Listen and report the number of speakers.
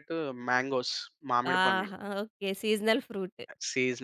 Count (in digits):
2